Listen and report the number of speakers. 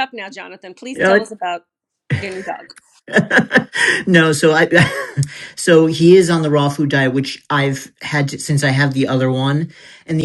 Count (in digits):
2